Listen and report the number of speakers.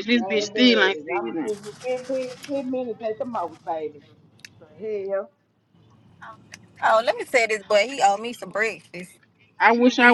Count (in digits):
3